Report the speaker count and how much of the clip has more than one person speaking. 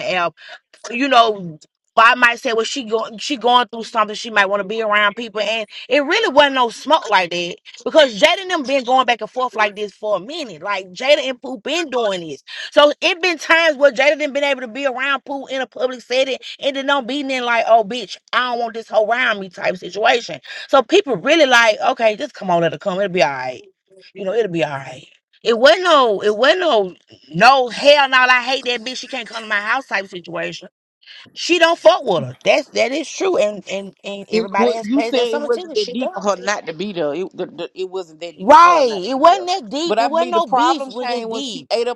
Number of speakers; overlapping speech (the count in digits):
2, about 11%